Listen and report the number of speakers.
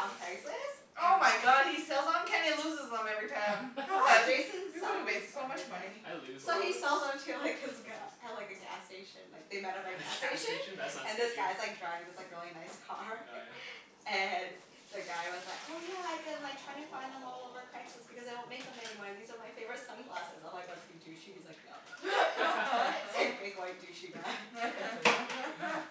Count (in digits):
3